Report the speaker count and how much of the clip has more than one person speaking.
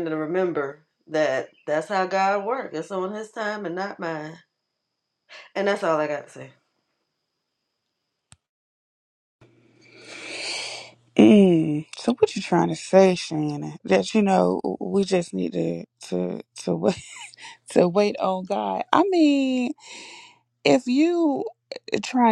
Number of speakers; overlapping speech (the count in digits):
2, no overlap